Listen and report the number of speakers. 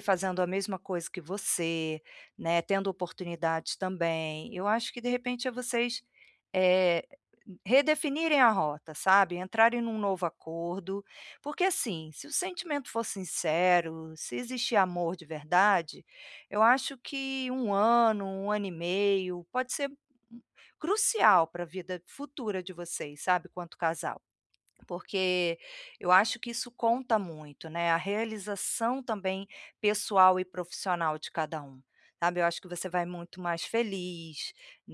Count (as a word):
one